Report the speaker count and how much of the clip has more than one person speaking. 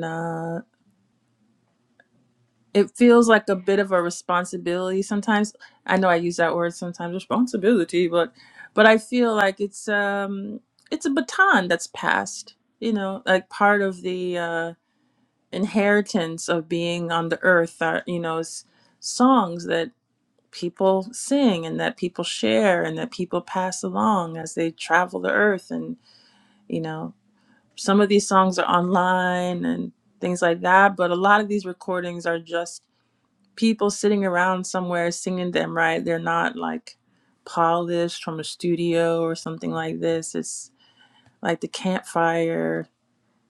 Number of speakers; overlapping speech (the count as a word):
one, no overlap